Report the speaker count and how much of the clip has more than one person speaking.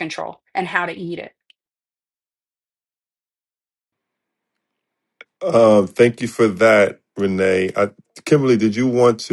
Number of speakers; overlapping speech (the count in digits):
2, no overlap